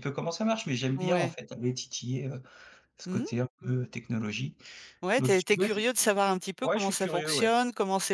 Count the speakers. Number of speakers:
2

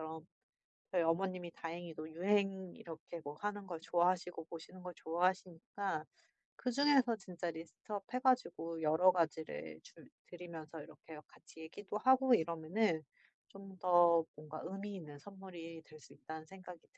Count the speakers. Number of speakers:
1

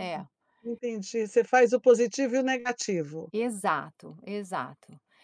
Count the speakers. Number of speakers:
2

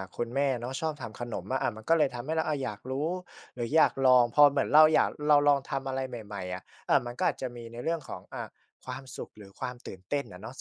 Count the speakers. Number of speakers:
1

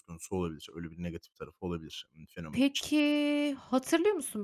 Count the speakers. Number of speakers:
2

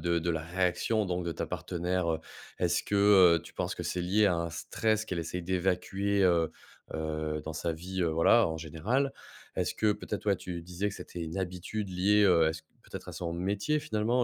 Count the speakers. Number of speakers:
1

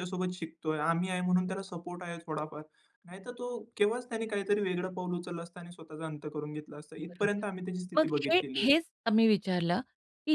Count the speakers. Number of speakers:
2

